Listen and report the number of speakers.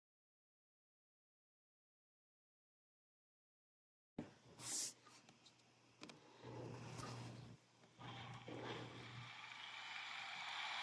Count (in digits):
0